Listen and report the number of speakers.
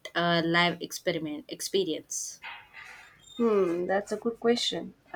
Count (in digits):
2